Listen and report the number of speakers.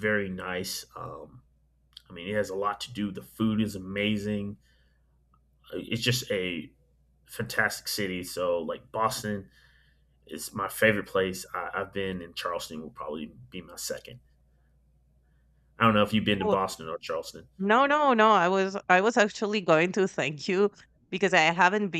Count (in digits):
2